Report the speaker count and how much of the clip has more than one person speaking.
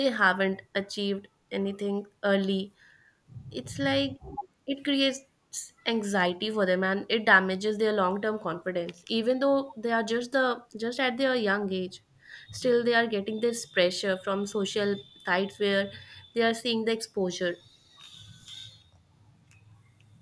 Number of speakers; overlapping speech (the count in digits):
1, no overlap